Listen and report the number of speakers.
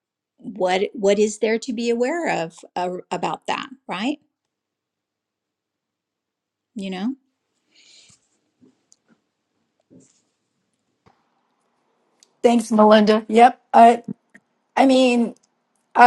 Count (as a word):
two